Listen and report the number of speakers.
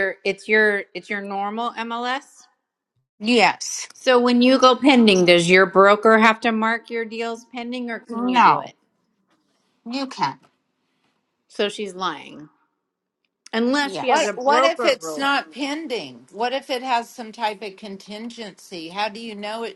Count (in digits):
3